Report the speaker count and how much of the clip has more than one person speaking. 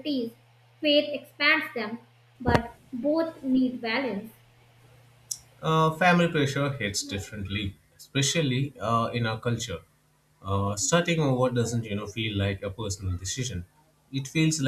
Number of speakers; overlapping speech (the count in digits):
2, no overlap